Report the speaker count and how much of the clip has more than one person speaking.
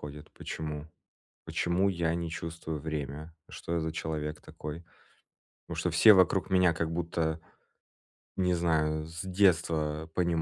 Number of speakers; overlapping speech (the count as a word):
one, no overlap